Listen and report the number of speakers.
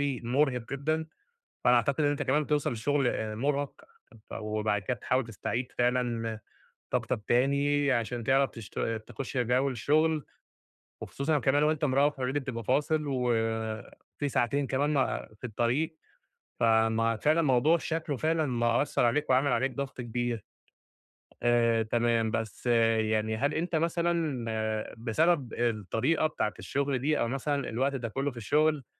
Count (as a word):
one